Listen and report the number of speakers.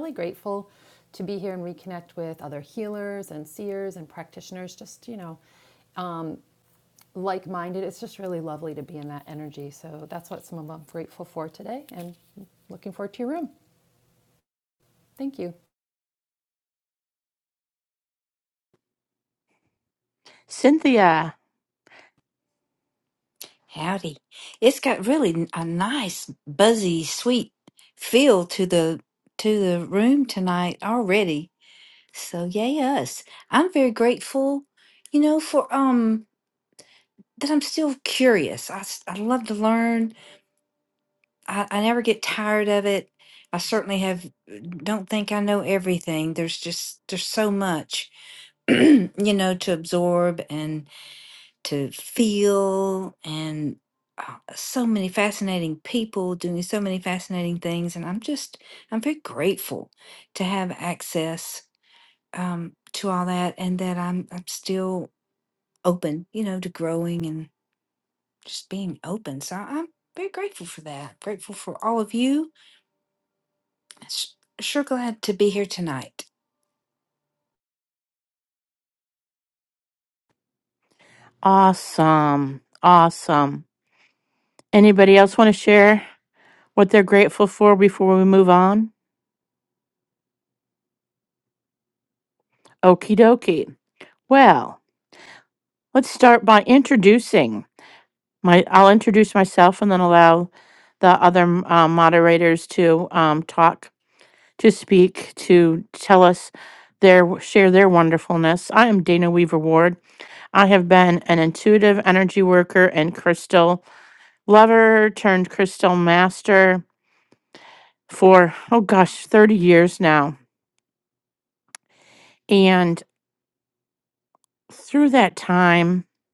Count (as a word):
three